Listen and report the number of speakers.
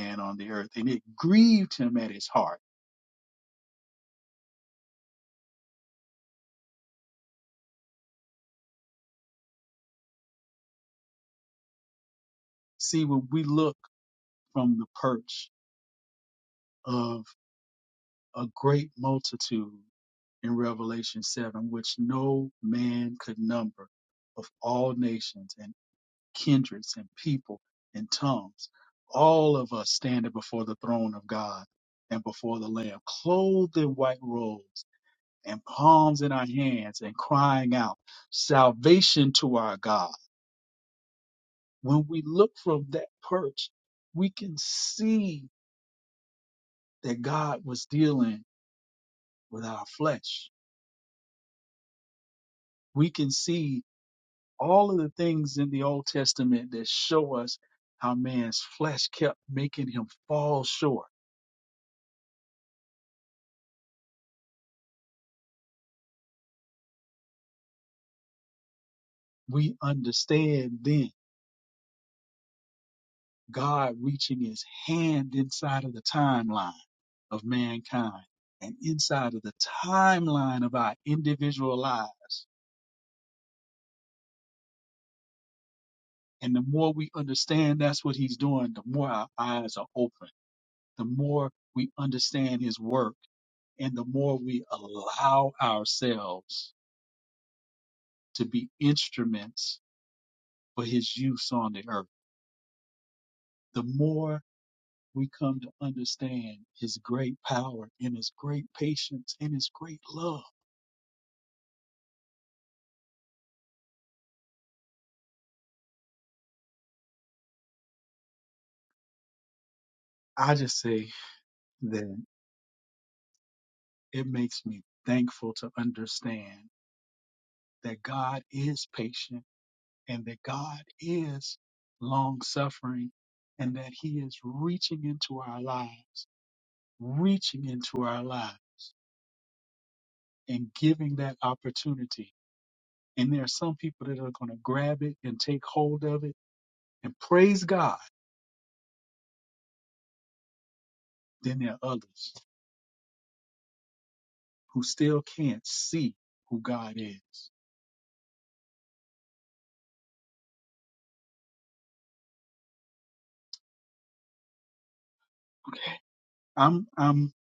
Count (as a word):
one